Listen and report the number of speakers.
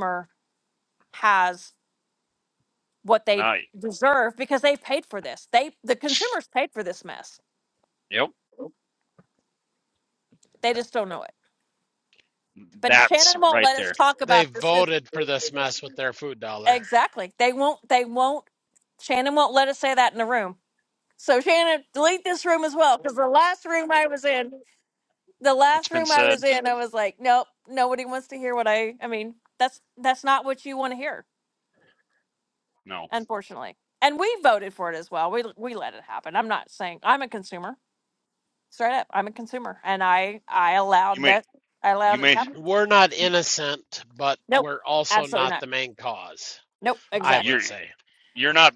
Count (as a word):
three